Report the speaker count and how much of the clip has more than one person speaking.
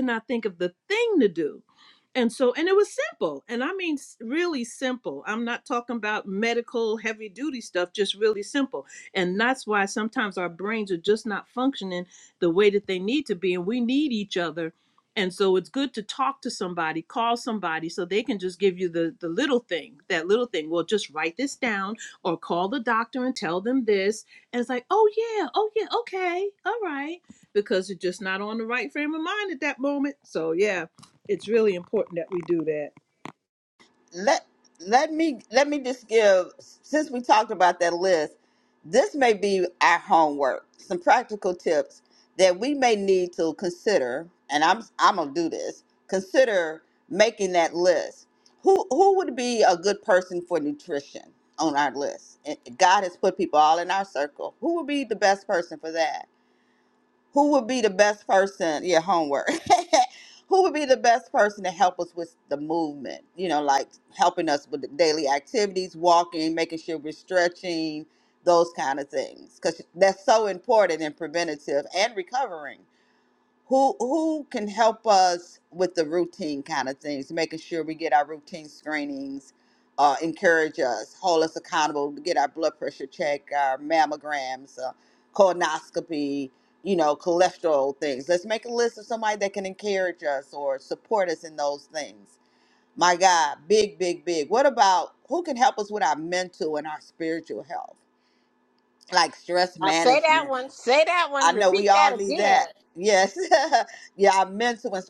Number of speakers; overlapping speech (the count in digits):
3, about 2%